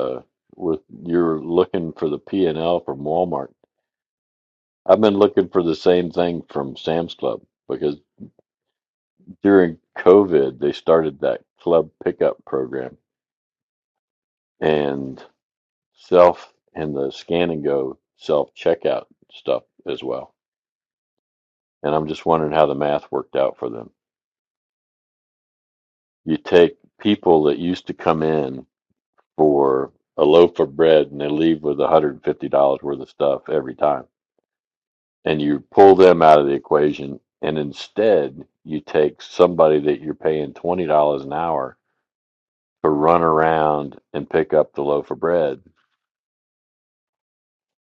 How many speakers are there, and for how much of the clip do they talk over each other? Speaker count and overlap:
1, no overlap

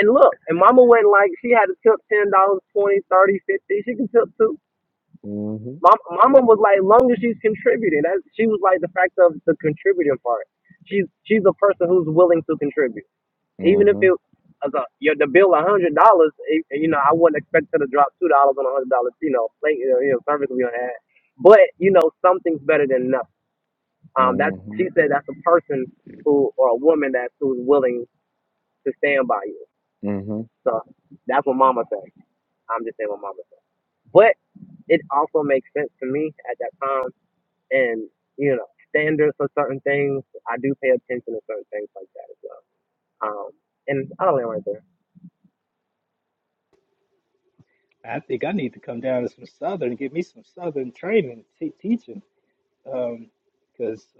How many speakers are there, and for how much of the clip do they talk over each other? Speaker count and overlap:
3, about 2%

